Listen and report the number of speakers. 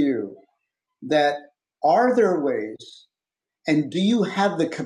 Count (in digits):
1